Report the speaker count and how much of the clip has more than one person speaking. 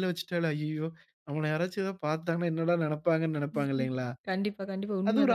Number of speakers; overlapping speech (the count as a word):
two, about 12%